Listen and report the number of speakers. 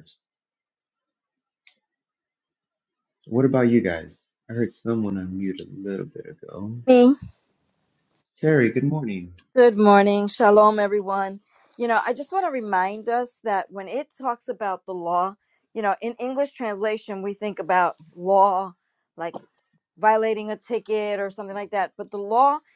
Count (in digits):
2